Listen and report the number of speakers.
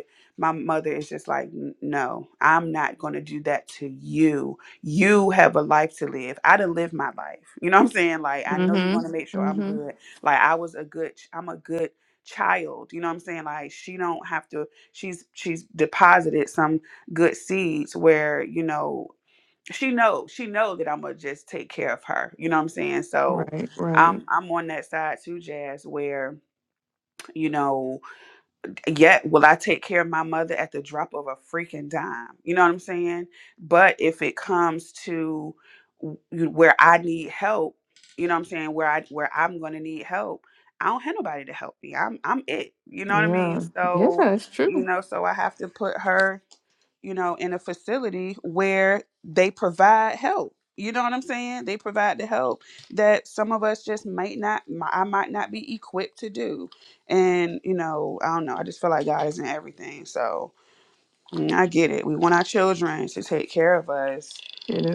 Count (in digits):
2